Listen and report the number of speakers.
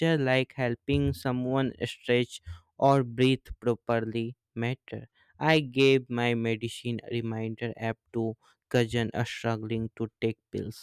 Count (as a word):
one